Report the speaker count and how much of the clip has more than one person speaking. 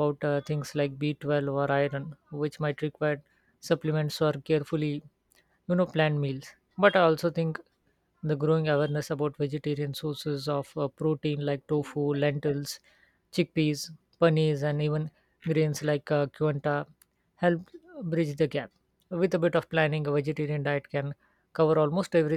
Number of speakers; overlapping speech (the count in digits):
1, no overlap